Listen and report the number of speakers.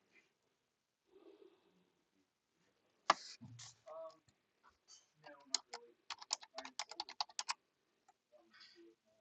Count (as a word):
zero